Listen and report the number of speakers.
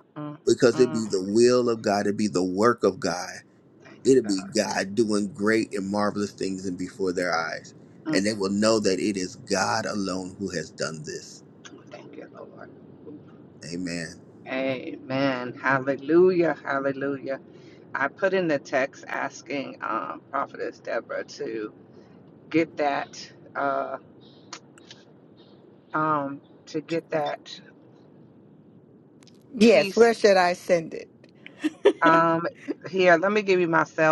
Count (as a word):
three